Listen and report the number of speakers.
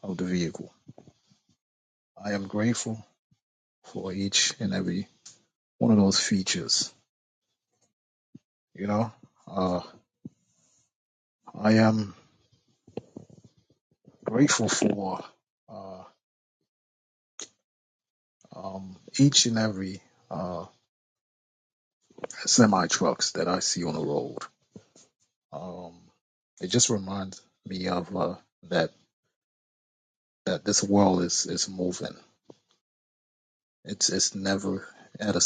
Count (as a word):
one